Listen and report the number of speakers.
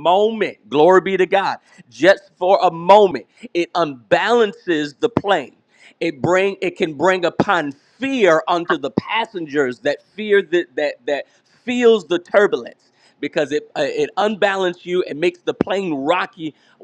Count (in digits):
1